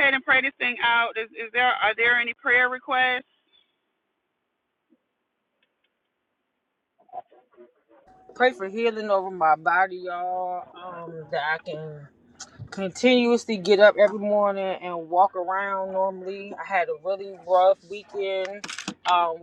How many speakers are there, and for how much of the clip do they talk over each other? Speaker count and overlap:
2, no overlap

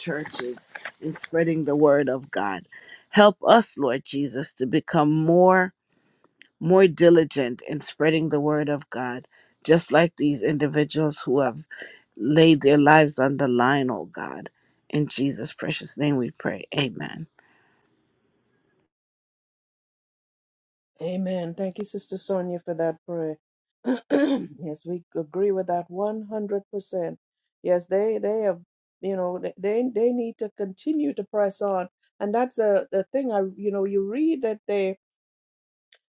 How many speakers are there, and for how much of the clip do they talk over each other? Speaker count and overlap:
2, no overlap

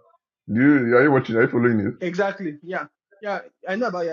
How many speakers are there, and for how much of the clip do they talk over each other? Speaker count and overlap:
2, no overlap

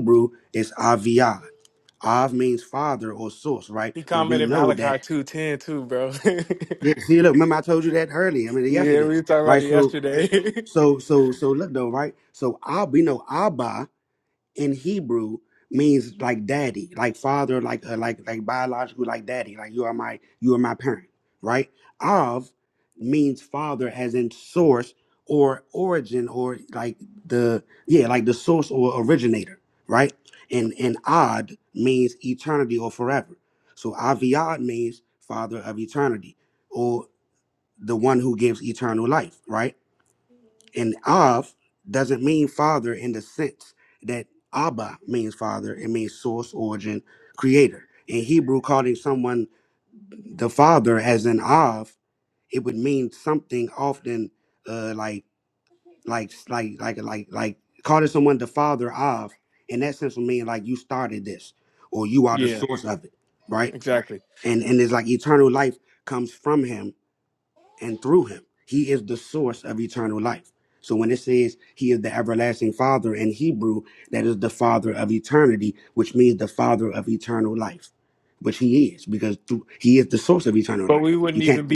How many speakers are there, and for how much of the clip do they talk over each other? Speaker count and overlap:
2, about 4%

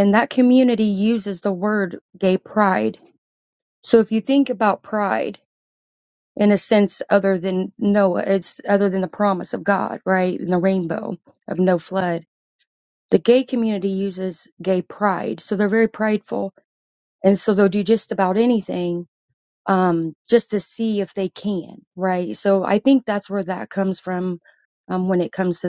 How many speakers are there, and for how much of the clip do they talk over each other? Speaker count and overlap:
1, no overlap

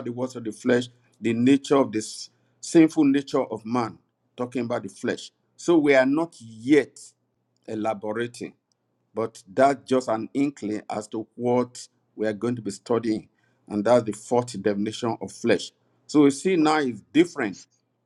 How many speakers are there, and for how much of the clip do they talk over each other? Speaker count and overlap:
1, no overlap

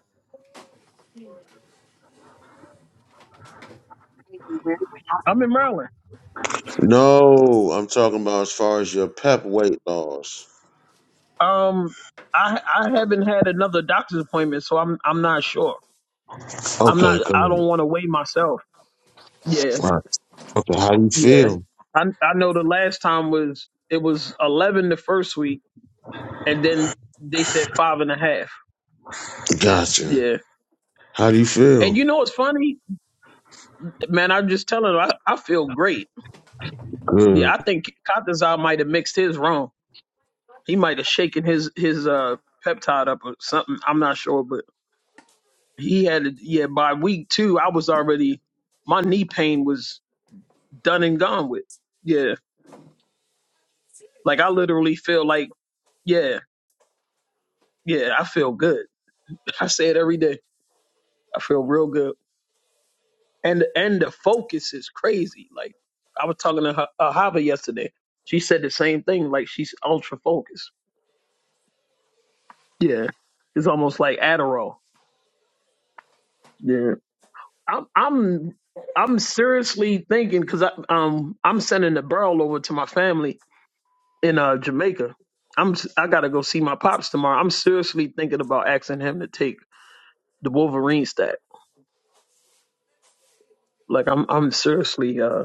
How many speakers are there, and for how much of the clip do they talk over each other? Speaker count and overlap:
2, about 2%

